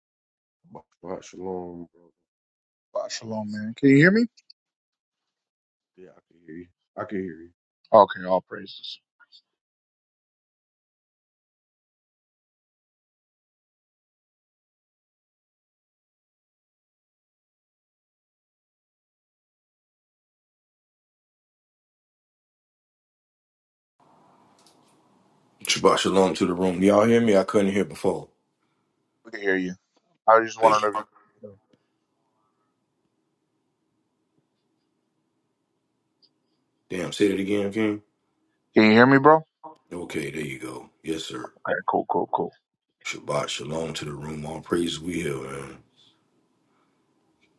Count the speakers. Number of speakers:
3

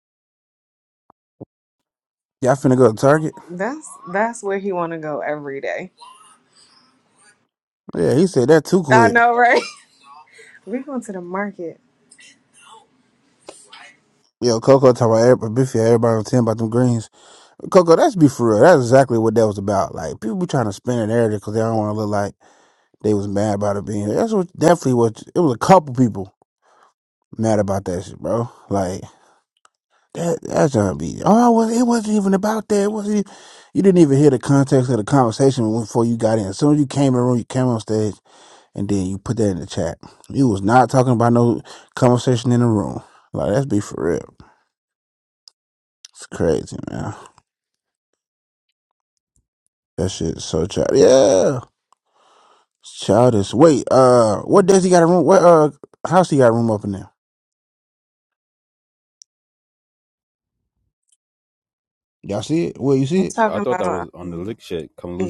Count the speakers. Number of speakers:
3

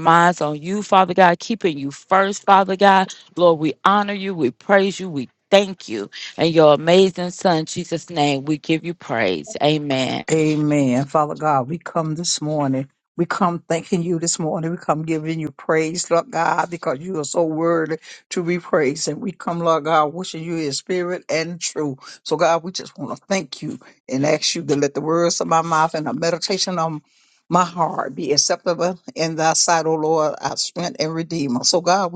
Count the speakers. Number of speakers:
2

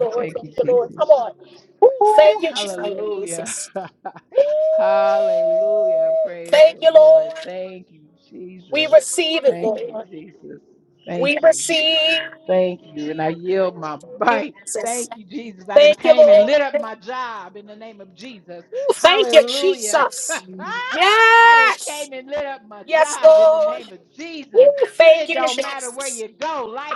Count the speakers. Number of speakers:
2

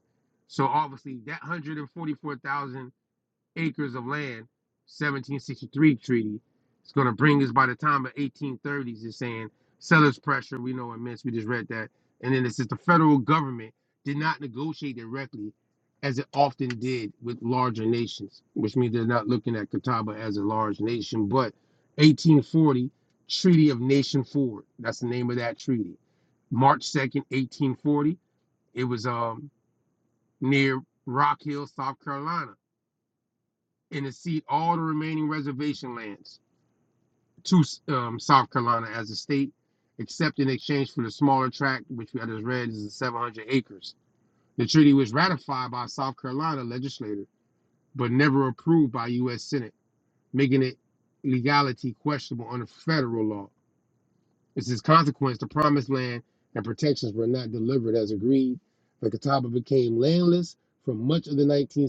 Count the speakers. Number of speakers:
1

